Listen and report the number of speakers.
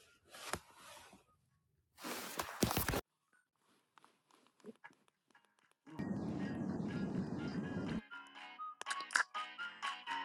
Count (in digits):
0